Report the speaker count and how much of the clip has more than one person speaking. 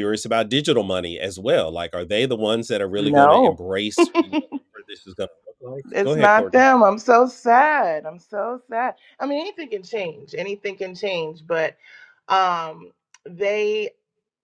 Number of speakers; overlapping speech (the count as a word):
two, about 9%